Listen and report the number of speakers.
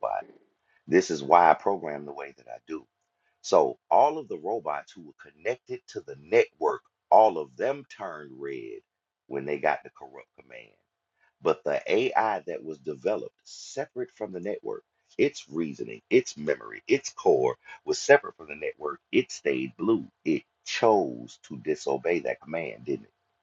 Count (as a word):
one